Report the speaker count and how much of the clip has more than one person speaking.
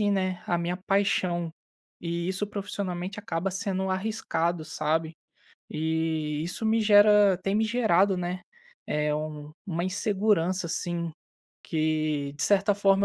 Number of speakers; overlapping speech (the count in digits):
1, no overlap